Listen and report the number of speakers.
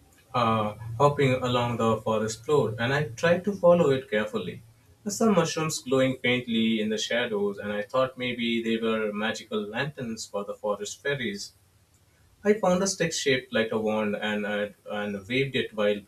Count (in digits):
1